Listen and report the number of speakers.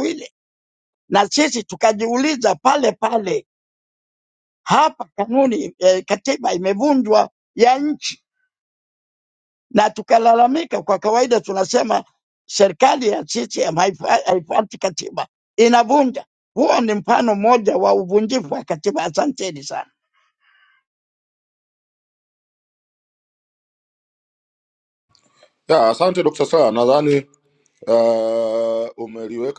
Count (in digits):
2